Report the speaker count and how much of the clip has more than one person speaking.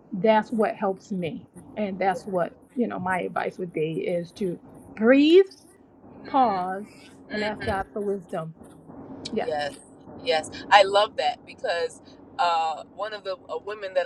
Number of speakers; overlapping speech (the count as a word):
two, about 4%